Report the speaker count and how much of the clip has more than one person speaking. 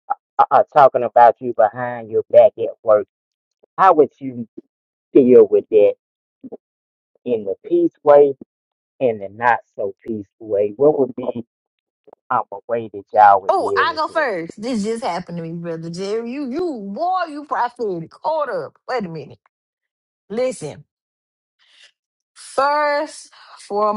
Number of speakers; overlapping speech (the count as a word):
two, about 3%